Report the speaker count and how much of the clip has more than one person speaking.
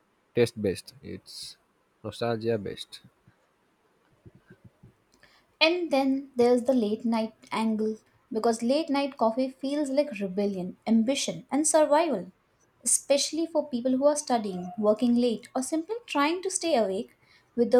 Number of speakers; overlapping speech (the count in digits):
2, no overlap